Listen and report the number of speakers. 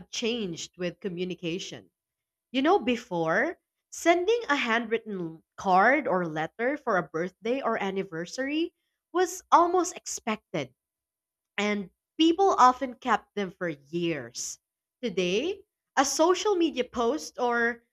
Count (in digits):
1